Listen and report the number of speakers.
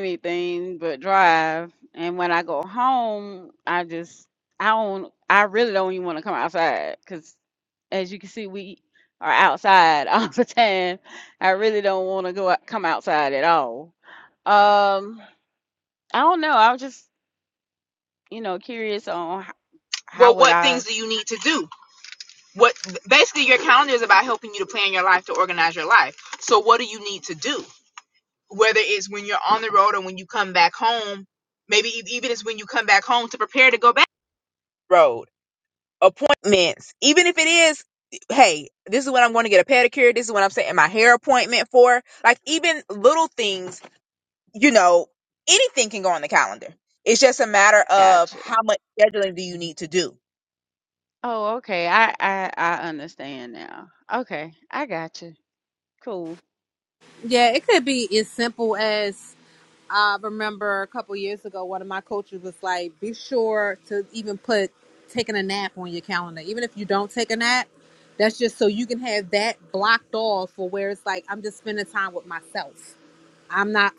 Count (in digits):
3